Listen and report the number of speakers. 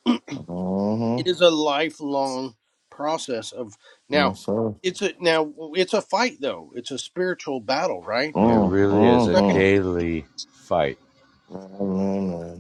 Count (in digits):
3